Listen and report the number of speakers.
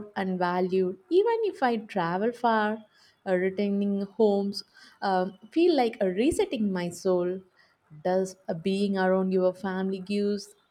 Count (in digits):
1